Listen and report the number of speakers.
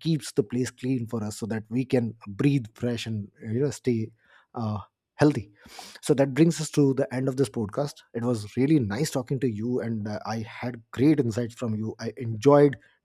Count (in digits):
1